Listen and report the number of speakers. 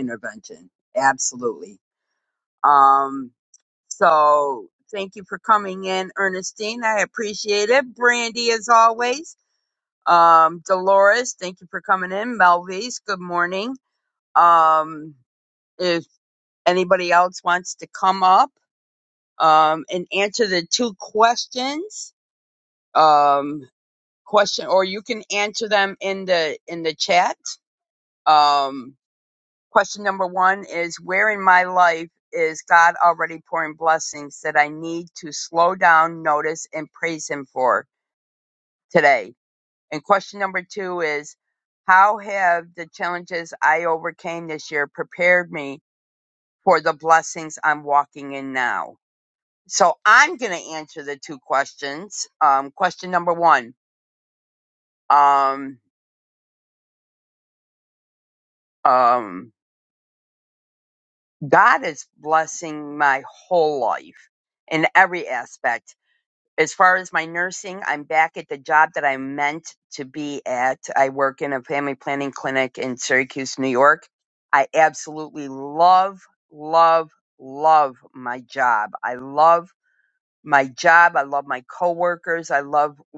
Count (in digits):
1